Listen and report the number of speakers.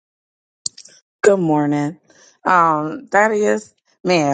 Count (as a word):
one